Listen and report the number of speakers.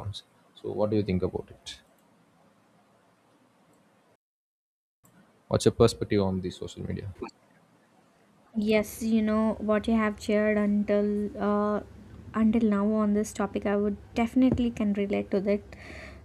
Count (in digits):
2